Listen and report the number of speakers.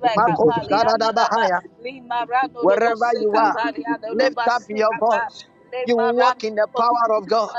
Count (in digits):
2